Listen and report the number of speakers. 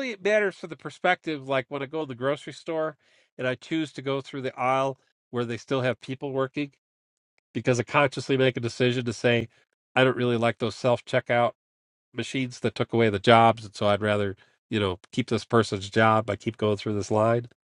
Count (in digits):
1